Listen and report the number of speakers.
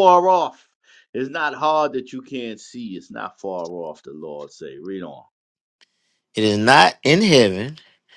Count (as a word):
two